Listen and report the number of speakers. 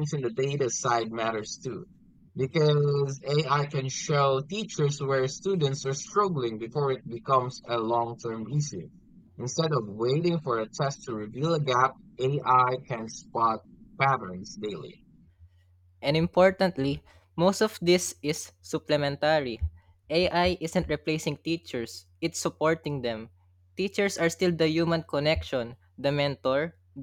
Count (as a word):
two